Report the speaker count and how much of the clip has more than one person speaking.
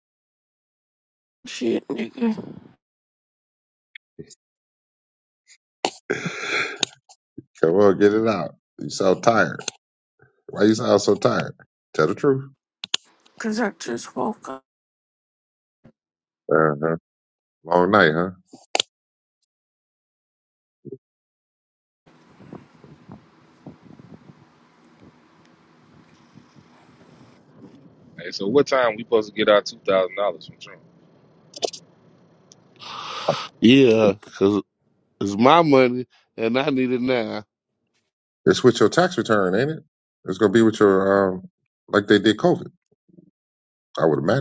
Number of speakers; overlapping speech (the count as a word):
four, no overlap